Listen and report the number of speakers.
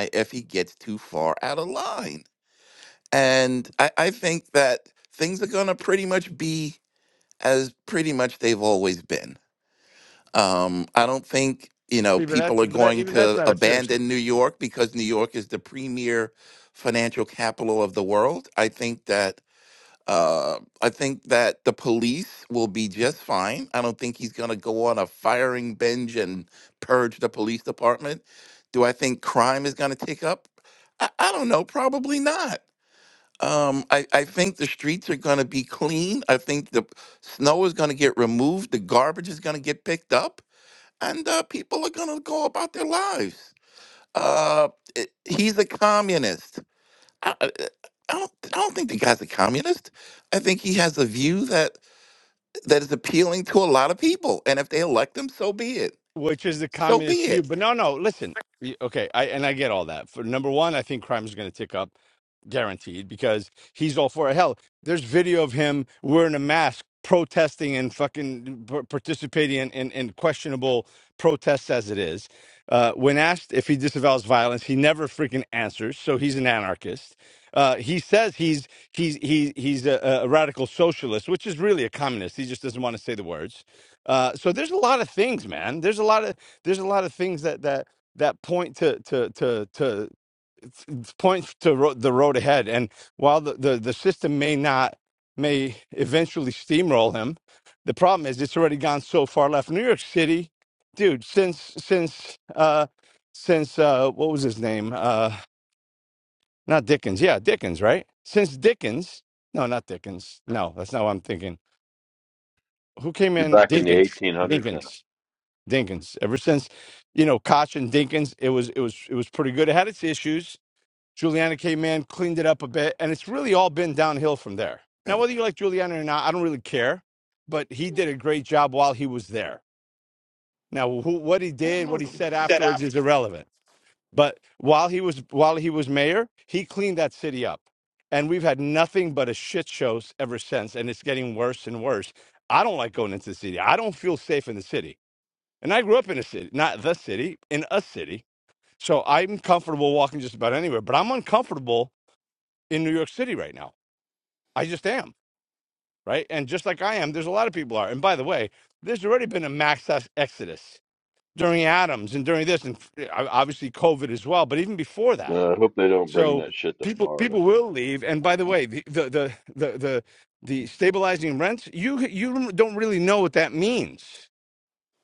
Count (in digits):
3